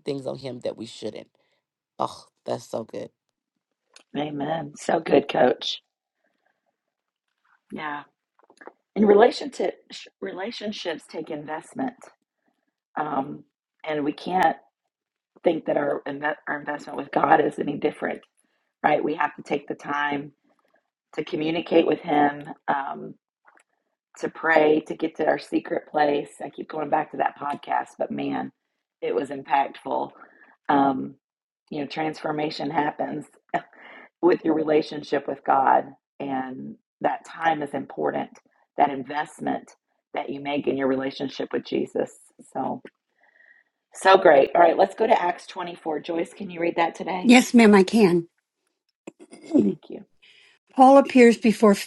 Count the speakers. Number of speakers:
3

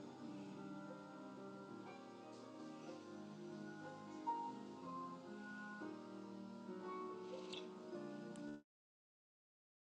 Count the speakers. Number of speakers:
0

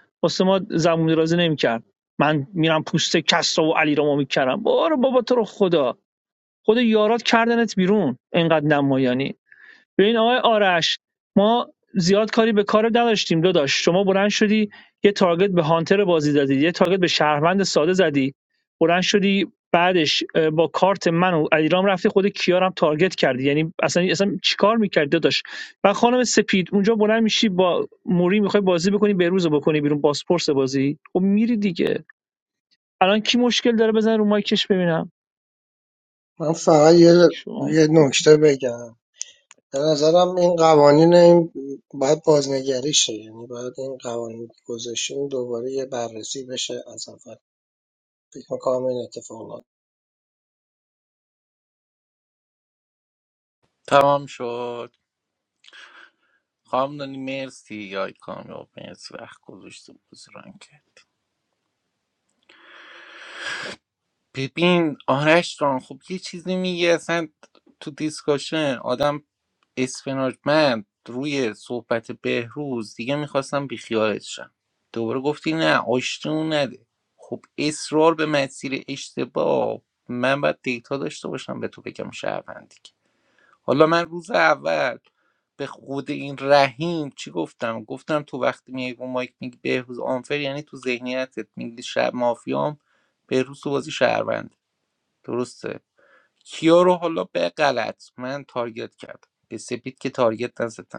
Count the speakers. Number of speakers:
3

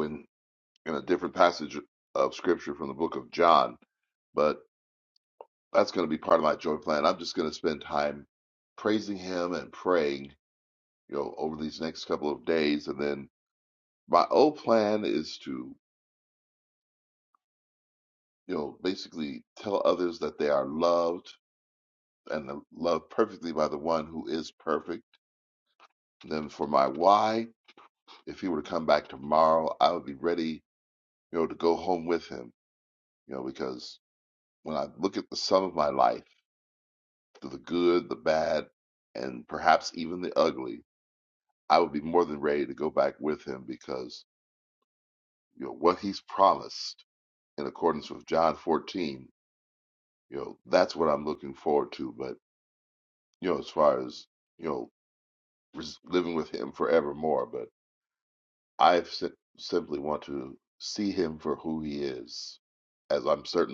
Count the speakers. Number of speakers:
1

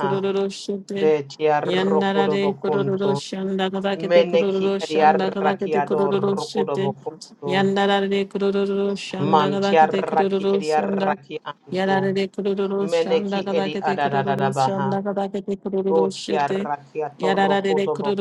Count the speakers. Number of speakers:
2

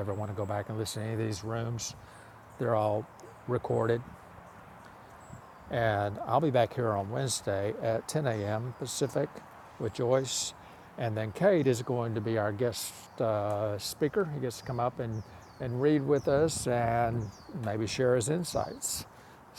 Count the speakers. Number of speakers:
1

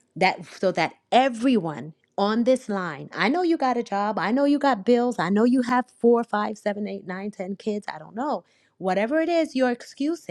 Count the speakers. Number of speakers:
1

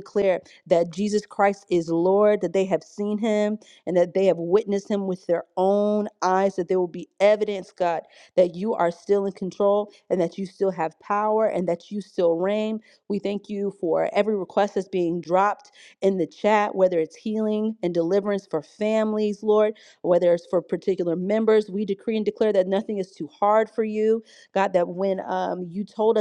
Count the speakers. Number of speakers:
1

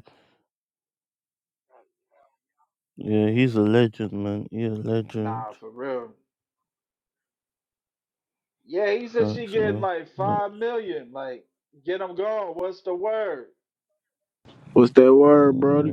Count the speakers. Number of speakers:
3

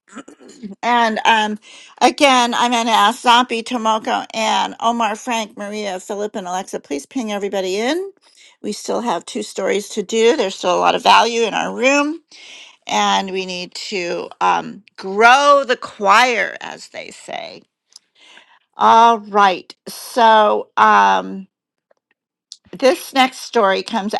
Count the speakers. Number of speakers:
1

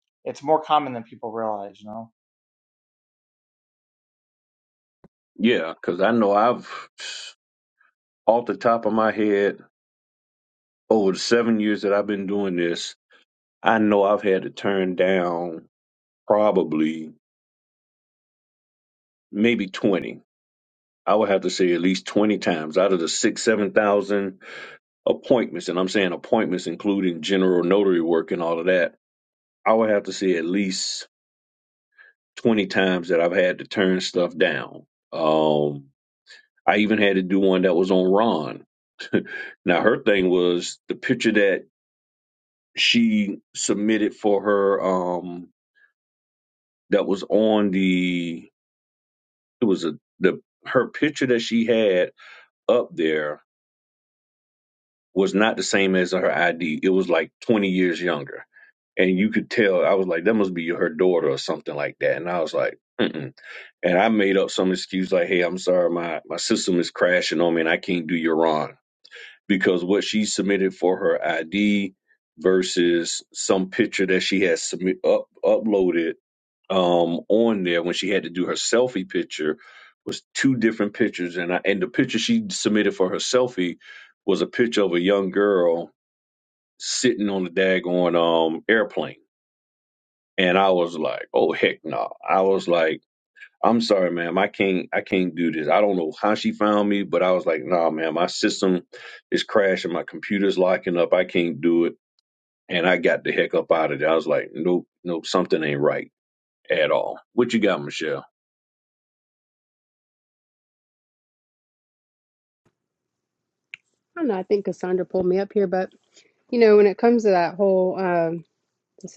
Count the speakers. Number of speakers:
3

